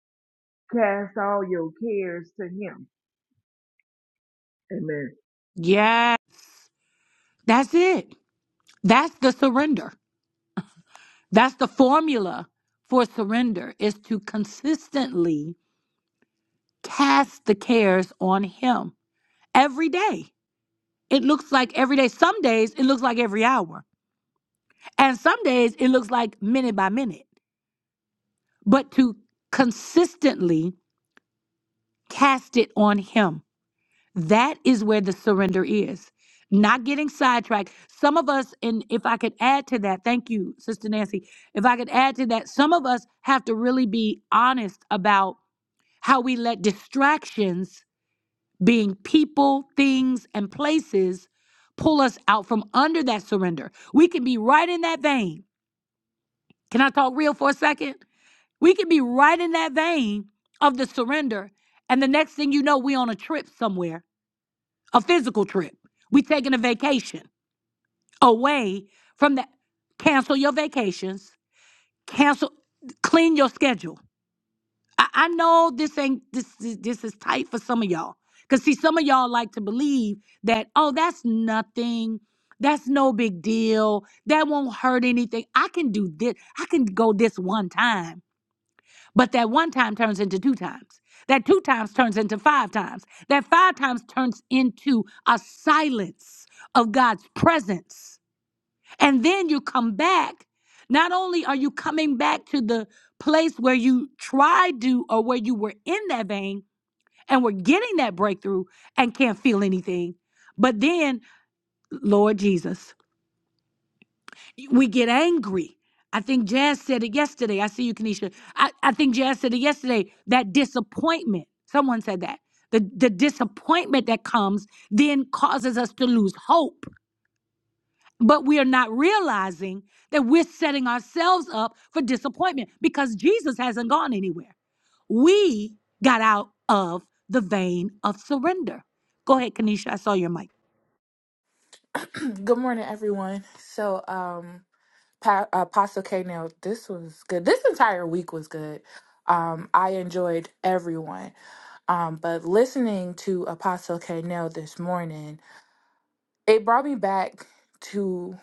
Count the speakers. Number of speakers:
three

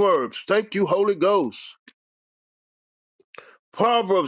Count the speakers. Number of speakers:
one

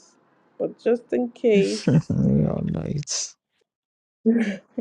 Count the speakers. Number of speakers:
two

